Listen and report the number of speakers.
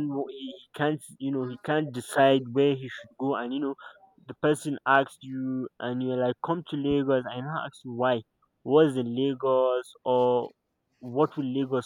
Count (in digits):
1